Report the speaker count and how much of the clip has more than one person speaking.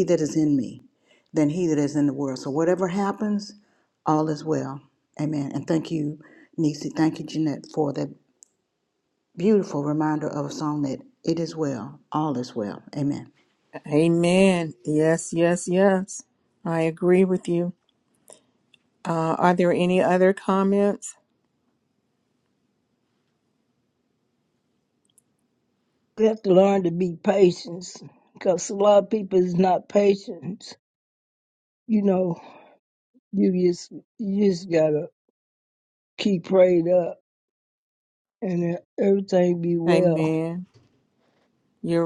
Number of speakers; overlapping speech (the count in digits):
3, about 1%